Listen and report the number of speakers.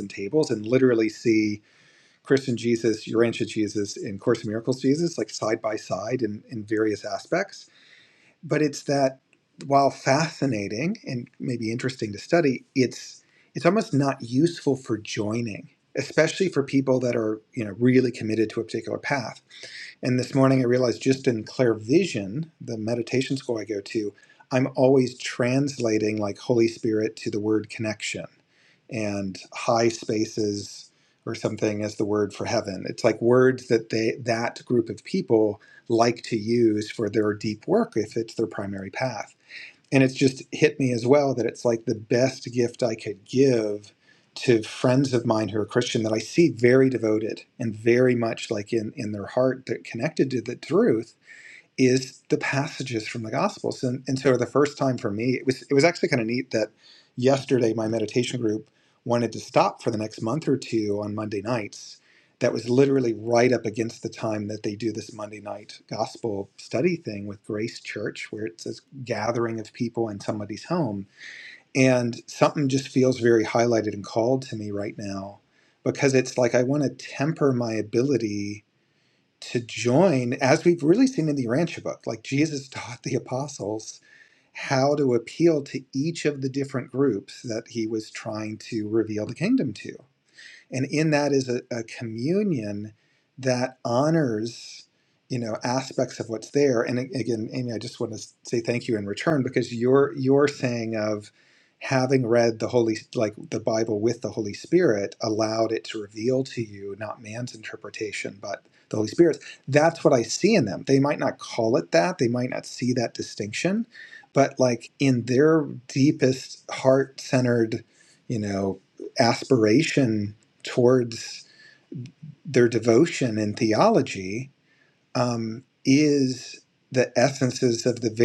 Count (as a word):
one